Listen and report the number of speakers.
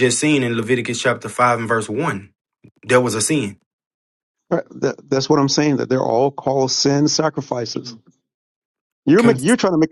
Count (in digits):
2